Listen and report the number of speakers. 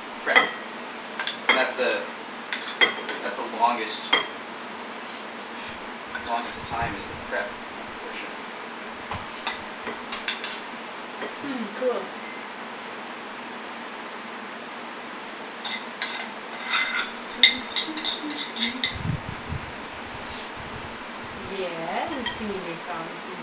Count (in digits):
2